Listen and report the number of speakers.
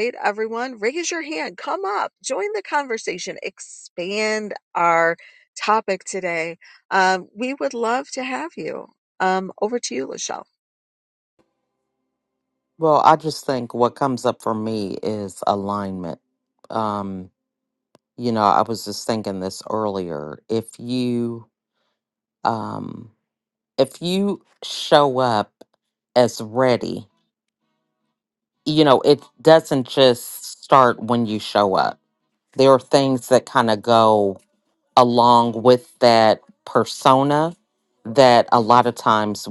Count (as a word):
two